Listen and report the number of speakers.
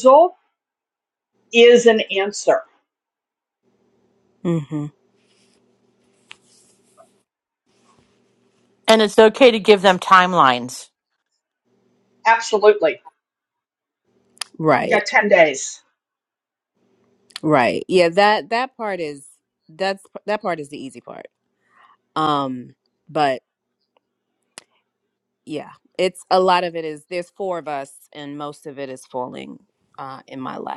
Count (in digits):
3